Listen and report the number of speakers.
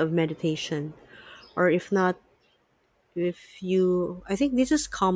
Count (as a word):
one